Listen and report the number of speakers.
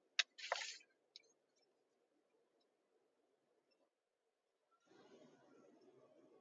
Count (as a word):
zero